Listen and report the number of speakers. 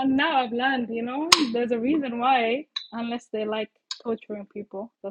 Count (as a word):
one